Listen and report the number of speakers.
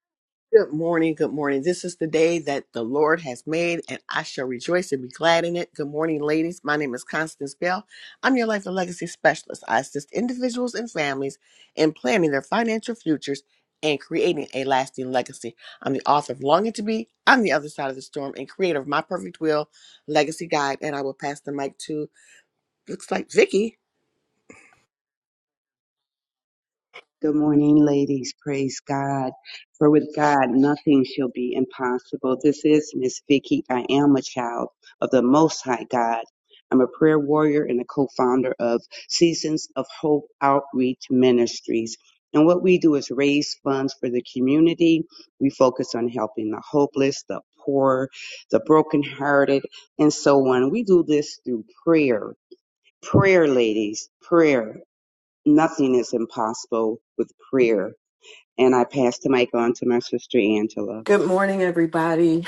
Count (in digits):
3